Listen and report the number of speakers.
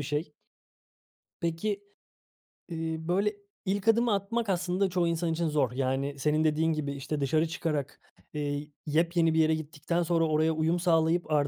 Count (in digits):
1